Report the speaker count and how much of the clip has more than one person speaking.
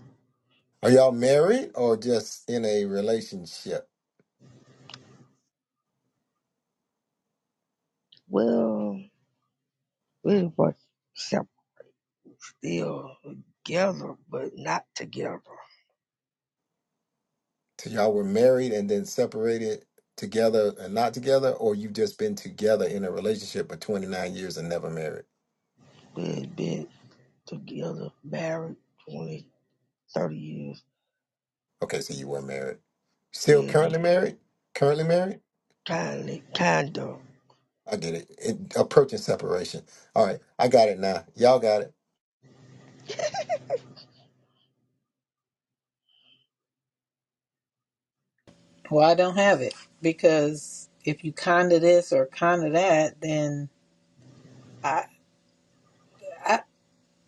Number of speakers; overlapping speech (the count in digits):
3, about 1%